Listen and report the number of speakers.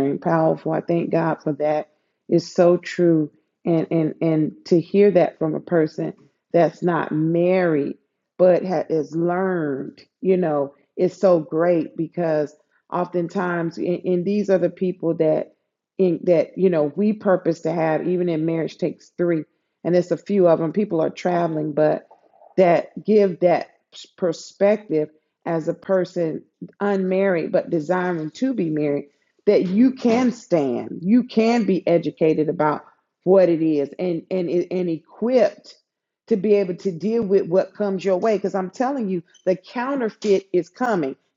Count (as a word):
one